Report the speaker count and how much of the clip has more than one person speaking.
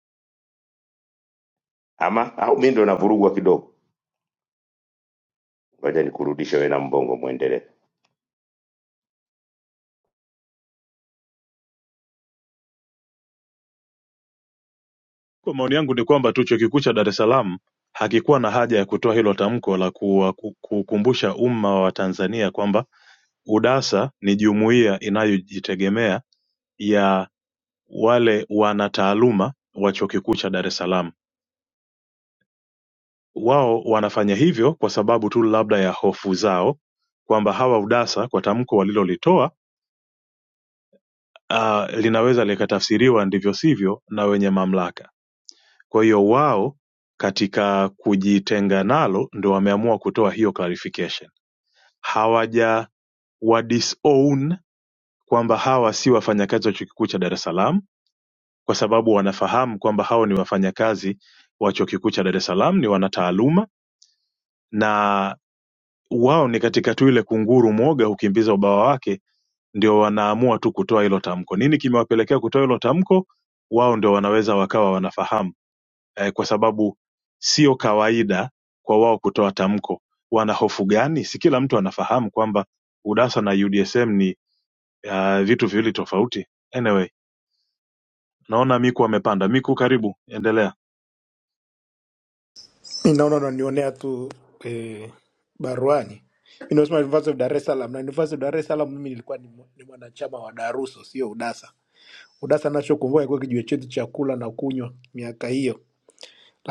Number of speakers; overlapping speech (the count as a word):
three, no overlap